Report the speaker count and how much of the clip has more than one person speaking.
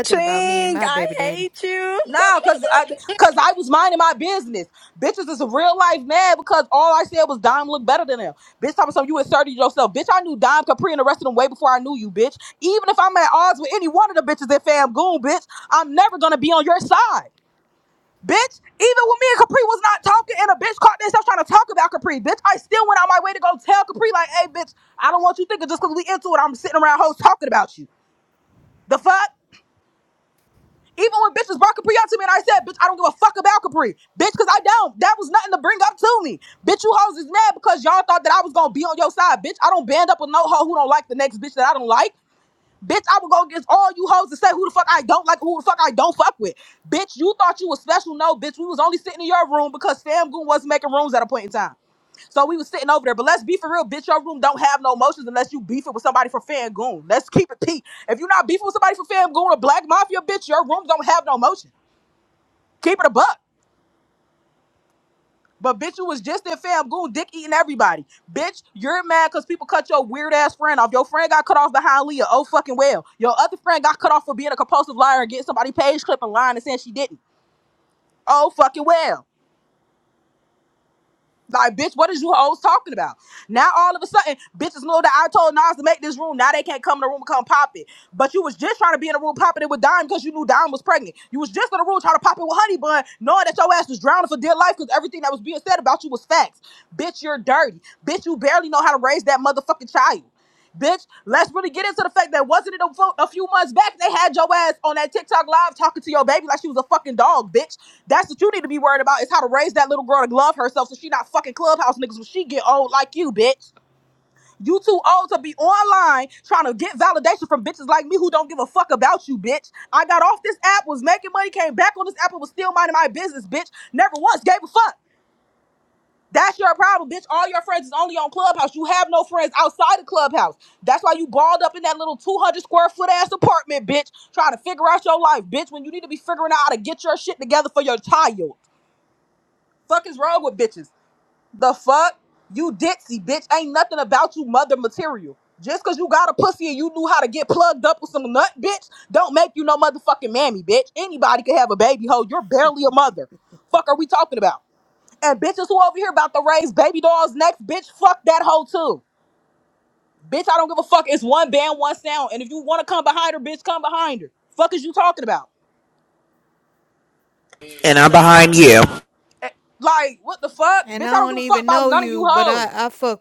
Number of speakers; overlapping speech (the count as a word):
four, about 2%